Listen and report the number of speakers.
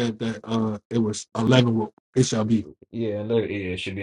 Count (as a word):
two